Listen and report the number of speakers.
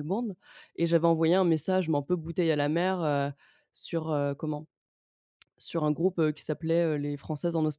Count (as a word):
one